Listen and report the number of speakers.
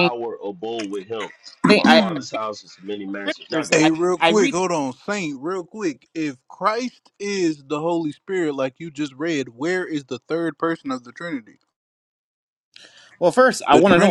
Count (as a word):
three